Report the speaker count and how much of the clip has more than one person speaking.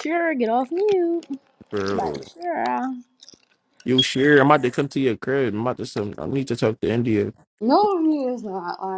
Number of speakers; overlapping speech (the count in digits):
3, about 4%